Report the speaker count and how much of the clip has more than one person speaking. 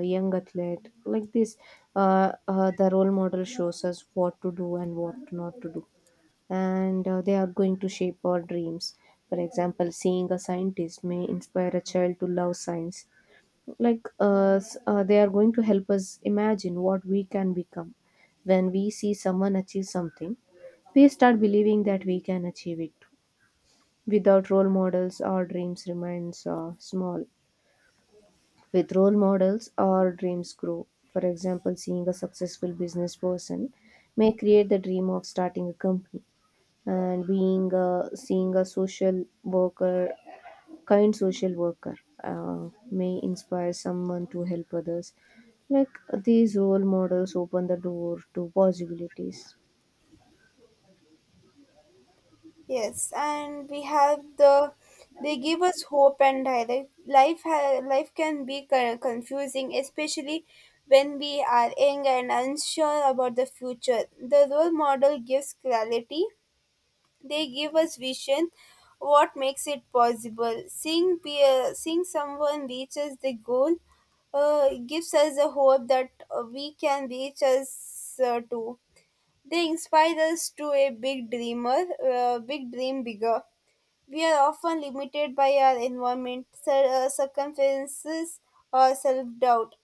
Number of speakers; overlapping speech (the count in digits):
2, no overlap